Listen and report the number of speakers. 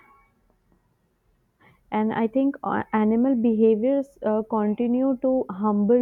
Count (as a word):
one